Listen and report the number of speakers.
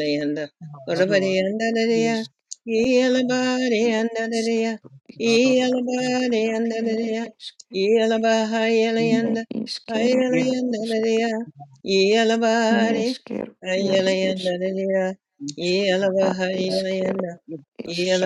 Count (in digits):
3